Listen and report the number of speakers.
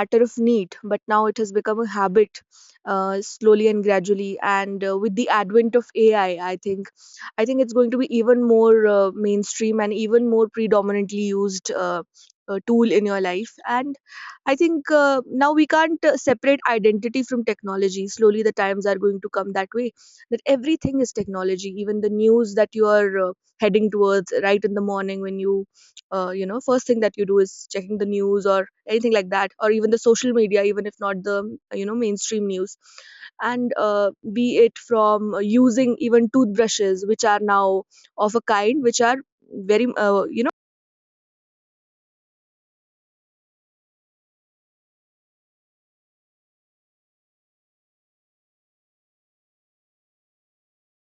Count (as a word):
one